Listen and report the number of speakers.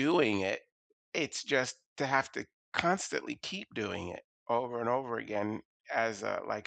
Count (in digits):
1